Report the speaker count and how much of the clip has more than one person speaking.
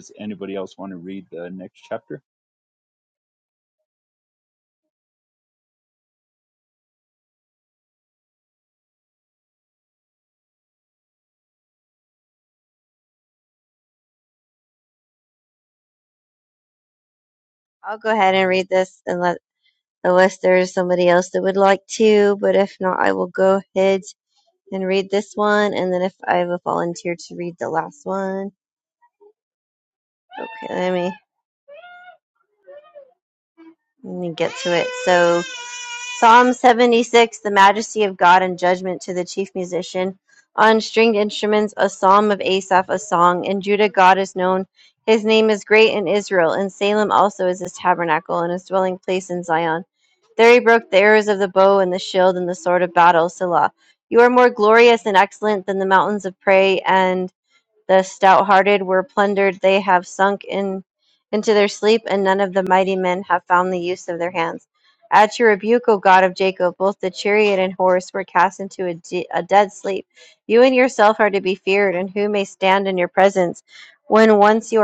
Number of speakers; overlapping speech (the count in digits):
2, no overlap